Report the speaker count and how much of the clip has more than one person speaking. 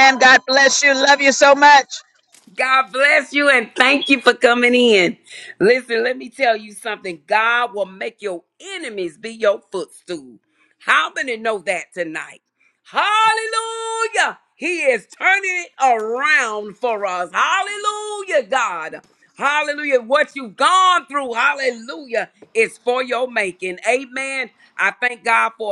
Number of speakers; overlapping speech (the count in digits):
2, no overlap